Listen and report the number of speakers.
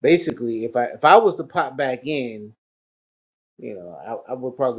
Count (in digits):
1